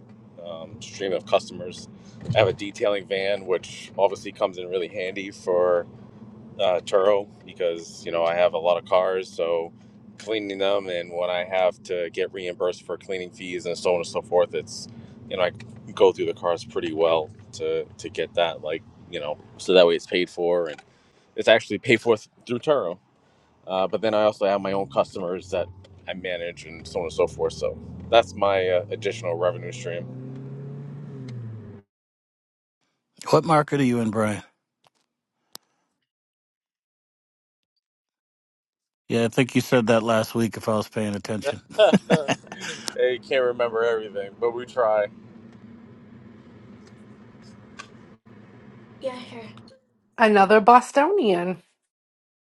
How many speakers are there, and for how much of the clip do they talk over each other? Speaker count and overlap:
3, no overlap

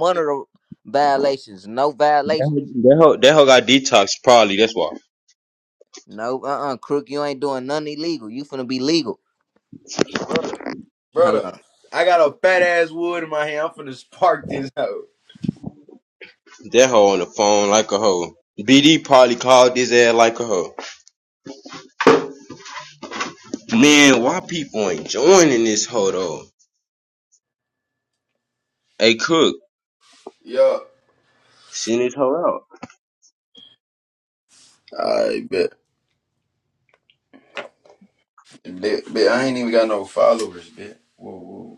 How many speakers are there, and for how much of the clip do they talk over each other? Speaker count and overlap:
3, about 1%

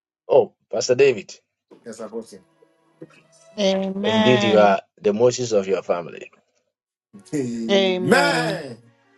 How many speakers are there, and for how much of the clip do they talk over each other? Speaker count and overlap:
3, about 14%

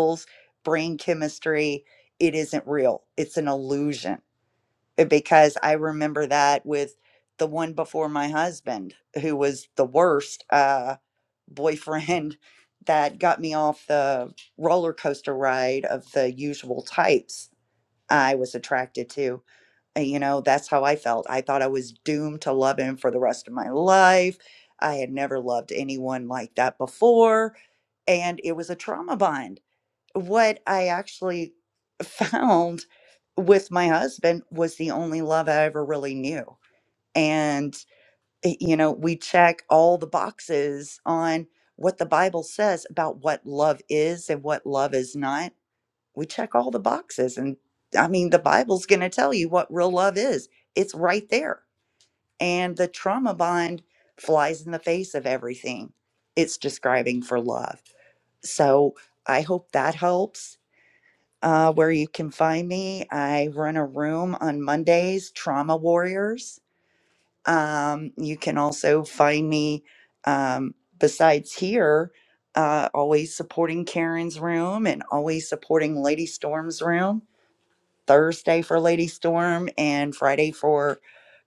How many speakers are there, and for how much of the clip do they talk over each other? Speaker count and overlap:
1, no overlap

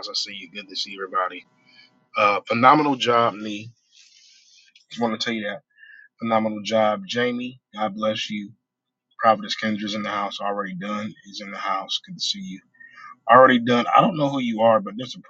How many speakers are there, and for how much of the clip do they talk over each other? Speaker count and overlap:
1, no overlap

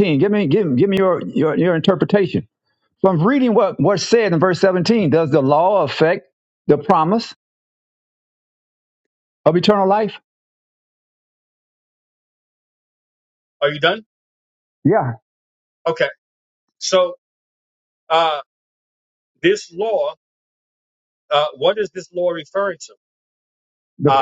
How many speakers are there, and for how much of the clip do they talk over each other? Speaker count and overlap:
2, about 1%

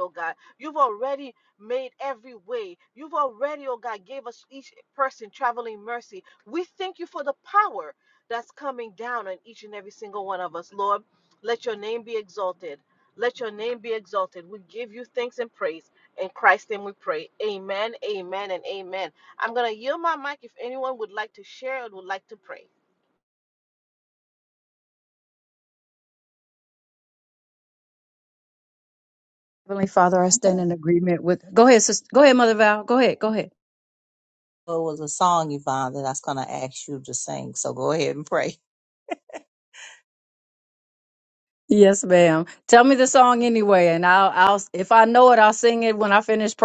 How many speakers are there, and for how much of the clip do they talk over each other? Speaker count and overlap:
3, about 1%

